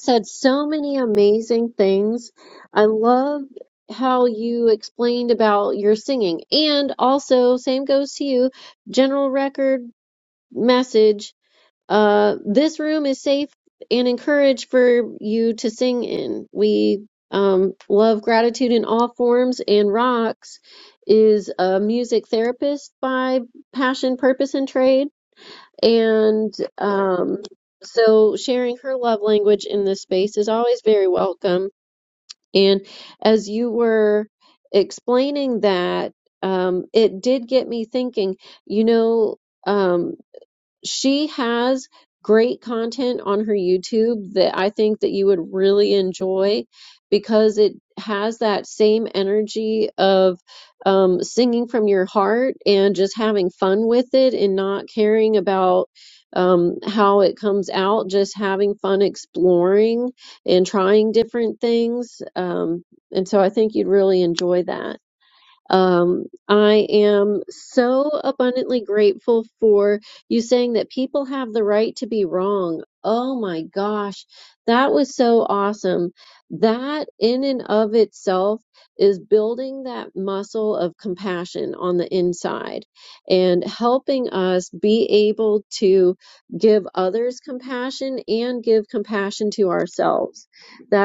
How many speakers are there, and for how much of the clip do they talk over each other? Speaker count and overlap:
1, no overlap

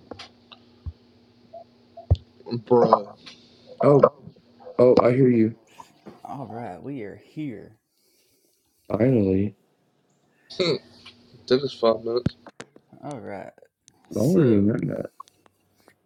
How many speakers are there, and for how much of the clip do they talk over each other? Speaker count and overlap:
3, about 3%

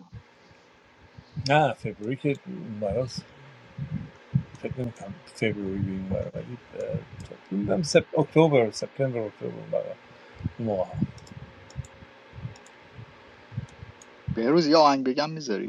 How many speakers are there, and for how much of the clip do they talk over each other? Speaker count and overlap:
2, no overlap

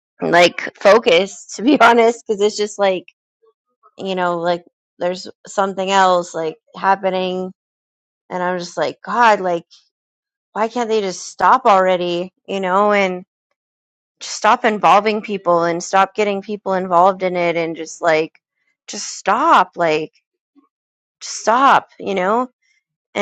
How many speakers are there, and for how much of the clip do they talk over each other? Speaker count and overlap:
1, no overlap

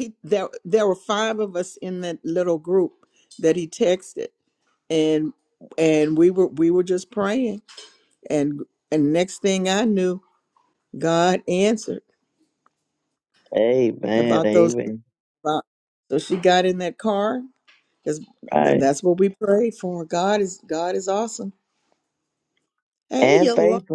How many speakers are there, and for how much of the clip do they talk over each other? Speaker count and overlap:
2, about 6%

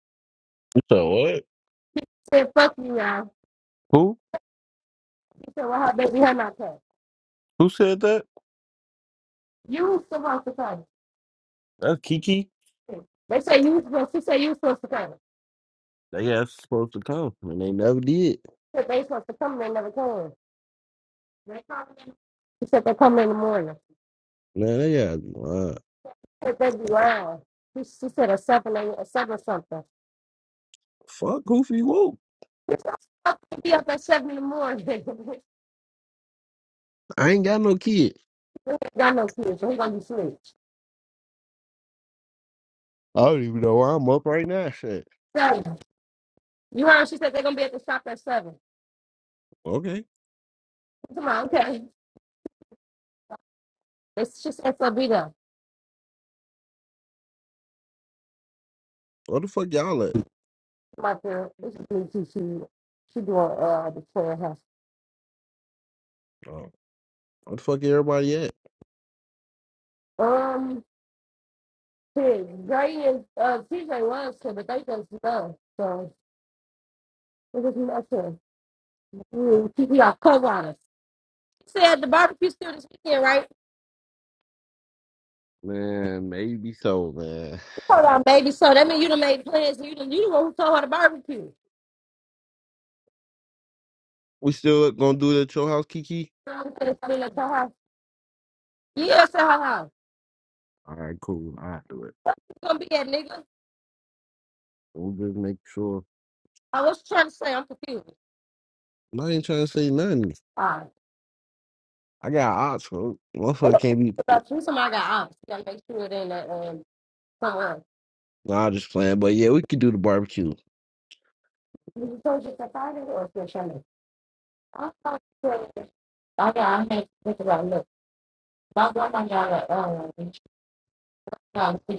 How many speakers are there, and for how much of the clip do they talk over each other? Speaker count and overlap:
2, under 1%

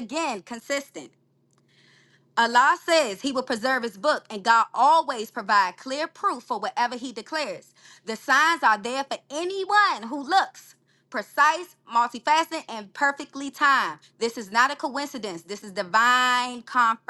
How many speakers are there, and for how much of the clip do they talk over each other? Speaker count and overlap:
1, no overlap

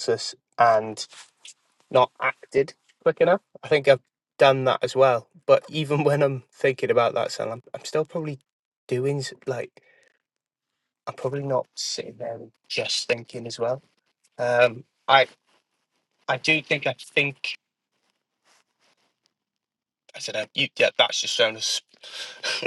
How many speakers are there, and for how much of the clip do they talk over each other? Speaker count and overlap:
1, no overlap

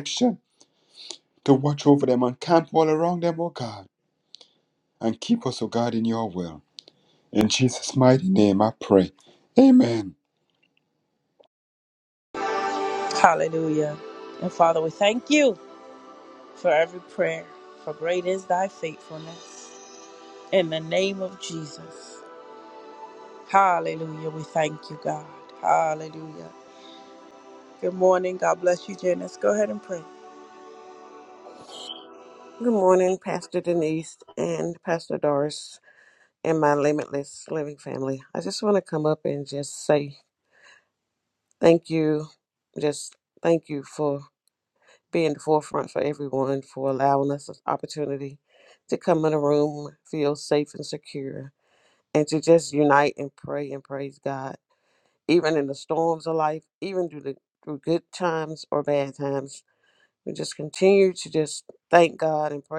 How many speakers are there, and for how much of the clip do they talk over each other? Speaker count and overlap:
3, no overlap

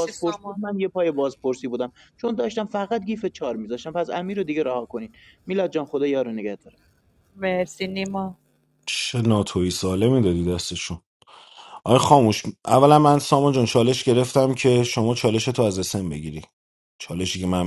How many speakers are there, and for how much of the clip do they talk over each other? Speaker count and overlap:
3, about 3%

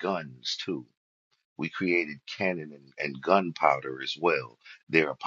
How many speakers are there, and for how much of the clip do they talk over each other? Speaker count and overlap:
1, no overlap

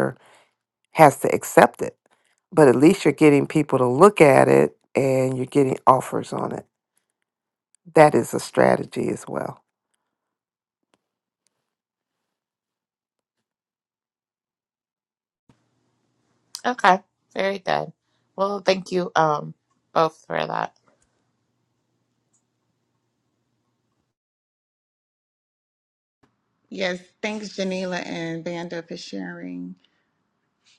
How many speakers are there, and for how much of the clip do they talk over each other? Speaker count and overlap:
3, no overlap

